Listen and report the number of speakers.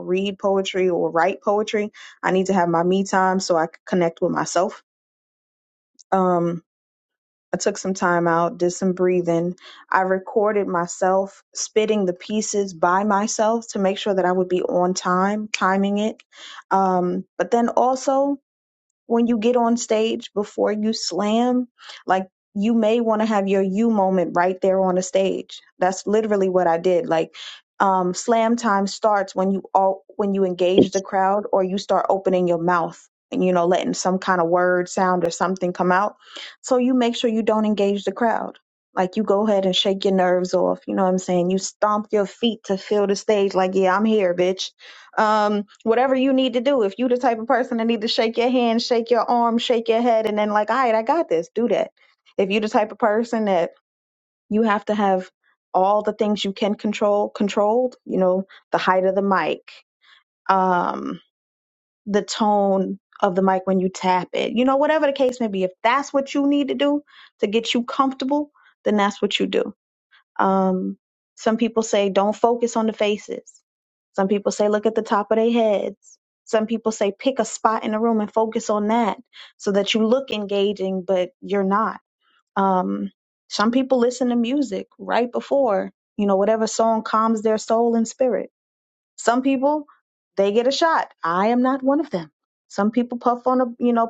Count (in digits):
1